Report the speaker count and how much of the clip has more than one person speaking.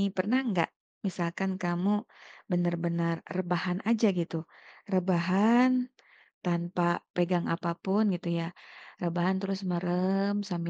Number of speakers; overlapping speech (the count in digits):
1, no overlap